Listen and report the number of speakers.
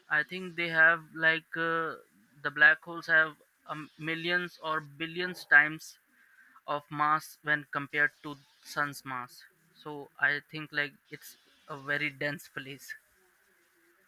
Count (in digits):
1